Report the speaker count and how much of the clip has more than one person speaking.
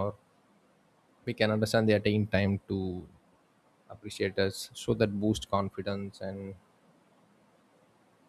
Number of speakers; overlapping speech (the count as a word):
one, no overlap